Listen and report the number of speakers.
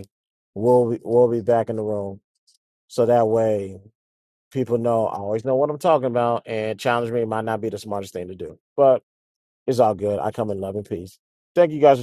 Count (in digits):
1